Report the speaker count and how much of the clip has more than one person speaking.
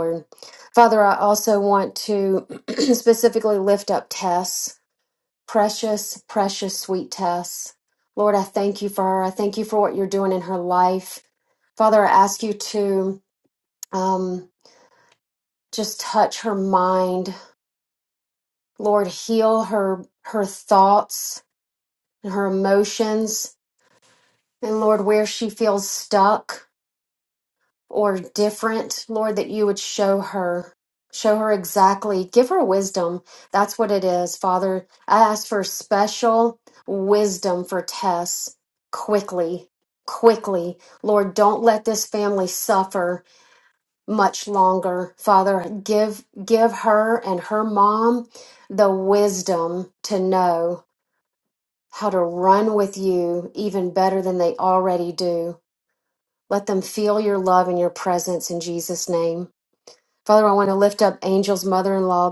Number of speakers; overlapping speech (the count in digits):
1, no overlap